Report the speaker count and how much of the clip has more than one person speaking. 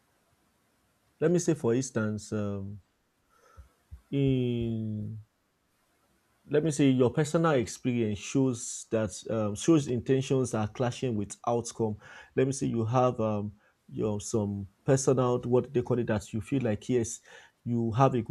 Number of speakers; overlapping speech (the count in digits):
1, no overlap